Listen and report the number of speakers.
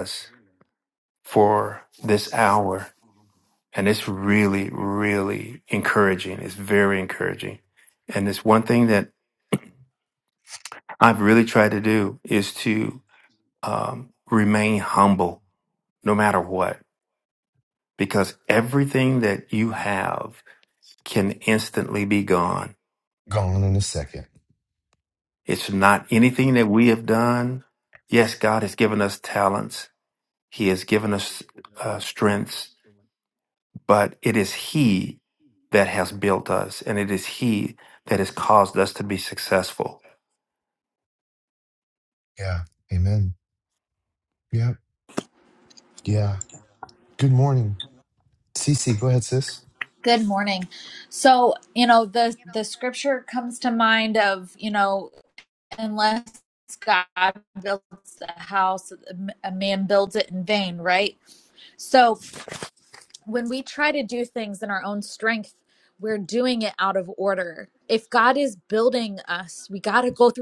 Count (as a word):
three